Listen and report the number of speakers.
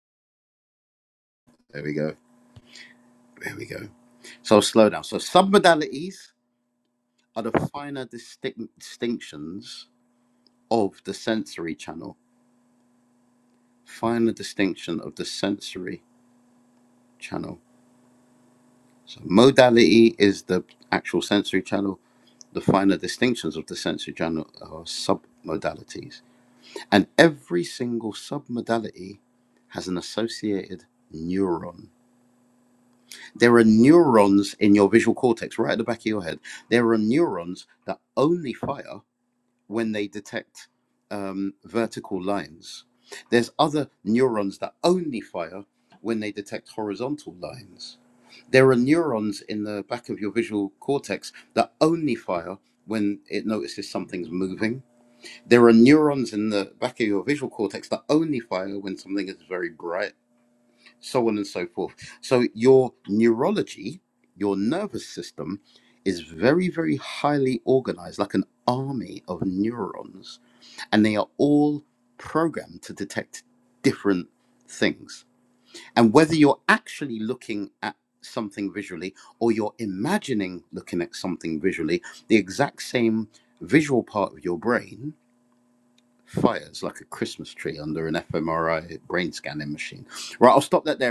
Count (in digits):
1